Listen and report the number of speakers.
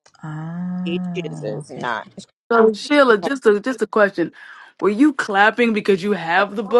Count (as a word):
three